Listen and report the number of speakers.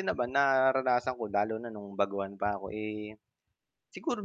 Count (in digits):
1